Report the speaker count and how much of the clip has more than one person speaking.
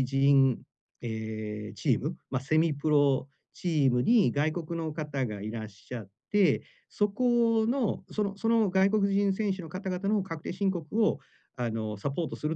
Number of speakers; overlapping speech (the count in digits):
1, no overlap